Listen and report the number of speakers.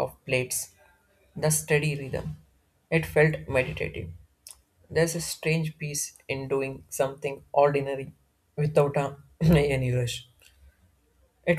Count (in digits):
1